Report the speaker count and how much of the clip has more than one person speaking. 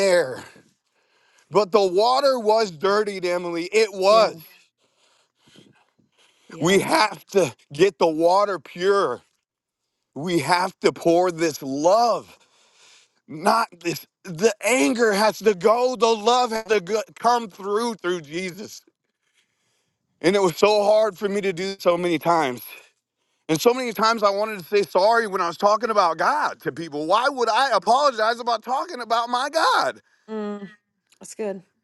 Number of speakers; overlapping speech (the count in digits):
2, about 1%